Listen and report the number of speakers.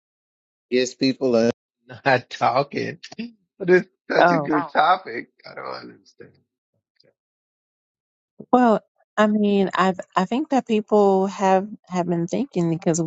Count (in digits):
2